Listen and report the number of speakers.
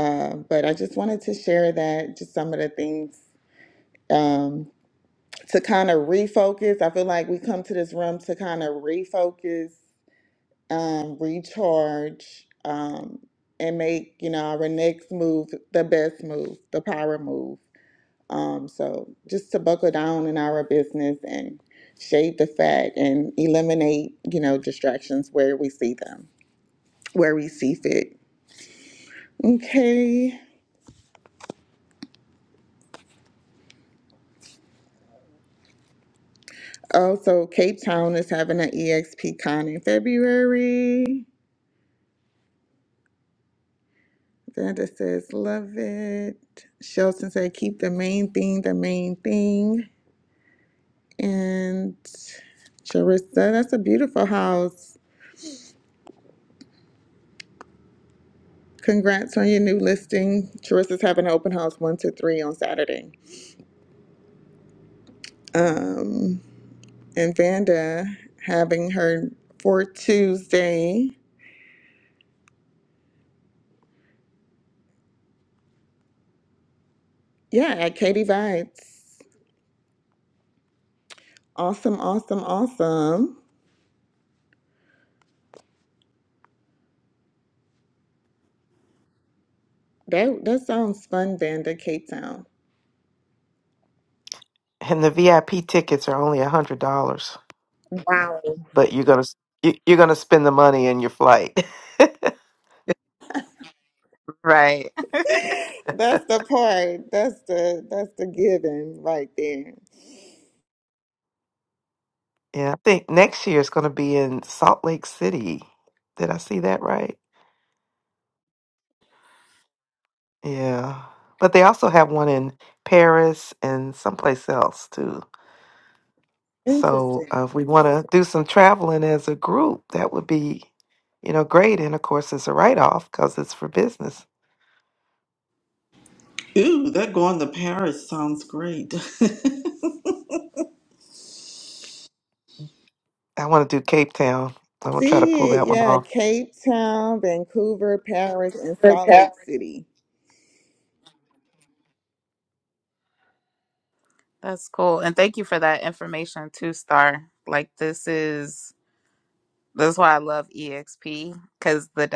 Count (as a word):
four